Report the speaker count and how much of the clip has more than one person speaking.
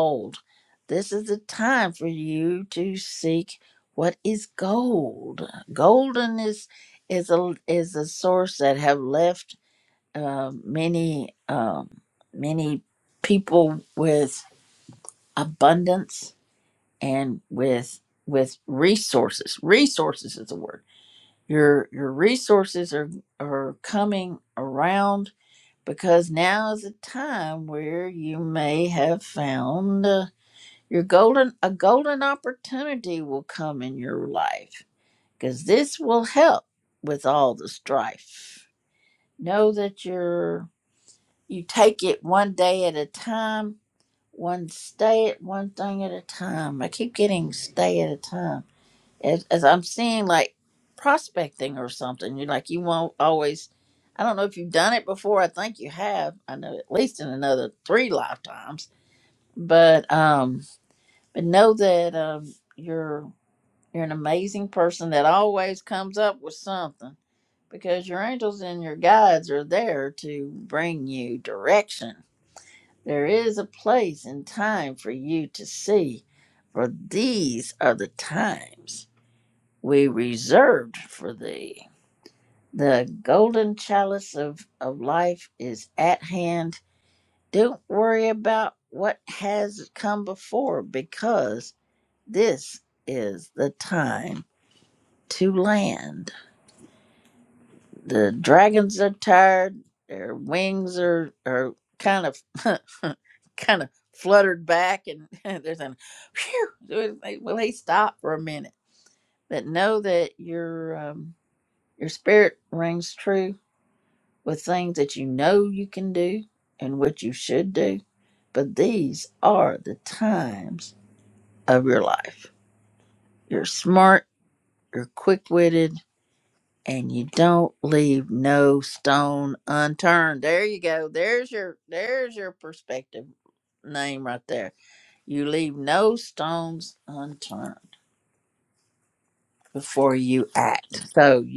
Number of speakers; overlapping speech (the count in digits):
1, no overlap